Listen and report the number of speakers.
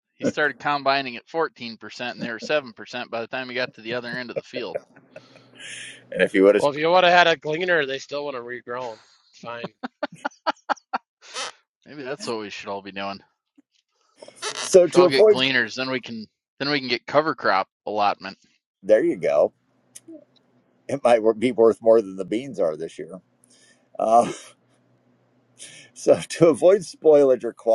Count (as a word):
three